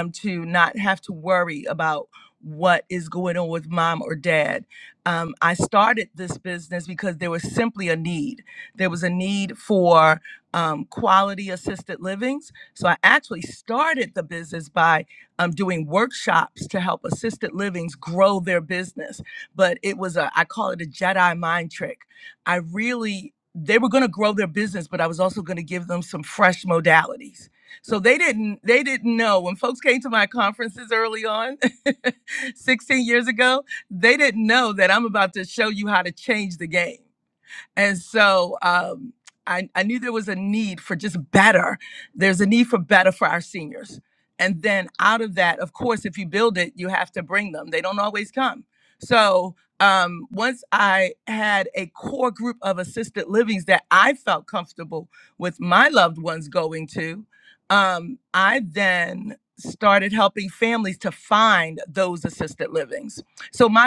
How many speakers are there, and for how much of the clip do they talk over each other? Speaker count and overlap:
1, no overlap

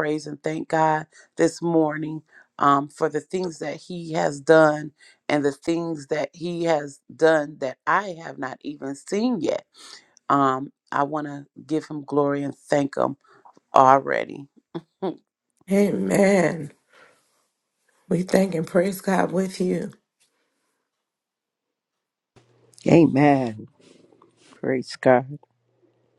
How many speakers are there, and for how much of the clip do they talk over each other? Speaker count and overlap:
3, no overlap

